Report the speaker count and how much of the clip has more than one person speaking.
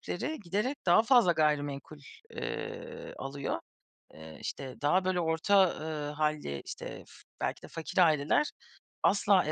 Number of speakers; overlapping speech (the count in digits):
1, no overlap